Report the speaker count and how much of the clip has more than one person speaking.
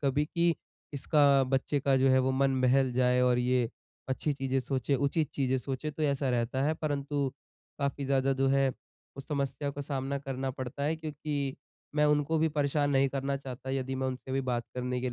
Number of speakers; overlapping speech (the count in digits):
1, no overlap